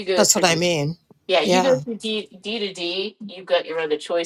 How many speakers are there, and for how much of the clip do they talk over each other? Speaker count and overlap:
2, about 16%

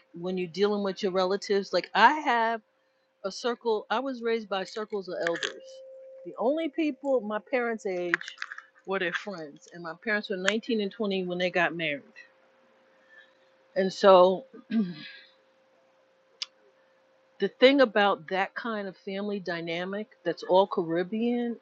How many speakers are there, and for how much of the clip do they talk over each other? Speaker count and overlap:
1, no overlap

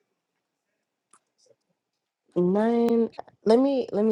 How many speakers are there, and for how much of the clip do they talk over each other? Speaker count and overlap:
1, no overlap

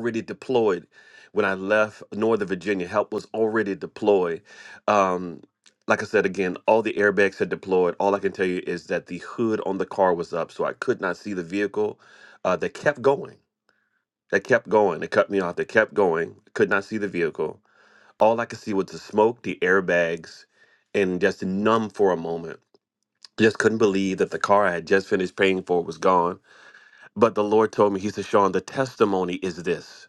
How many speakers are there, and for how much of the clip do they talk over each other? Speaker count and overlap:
1, no overlap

